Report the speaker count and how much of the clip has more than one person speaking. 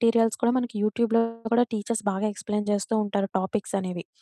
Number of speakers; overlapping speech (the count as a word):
one, no overlap